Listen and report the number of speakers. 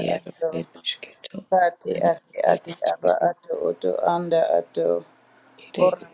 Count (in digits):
2